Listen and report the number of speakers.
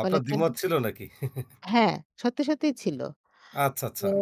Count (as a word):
two